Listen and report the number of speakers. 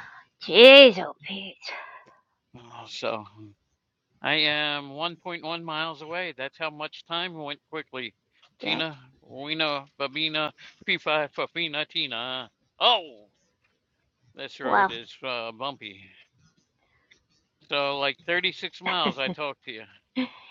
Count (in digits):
2